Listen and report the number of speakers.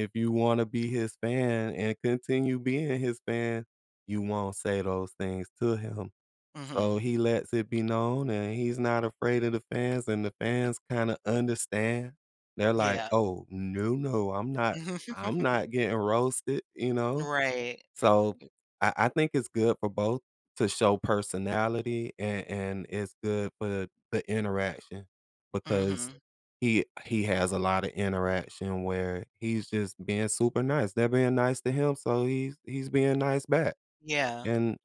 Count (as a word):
two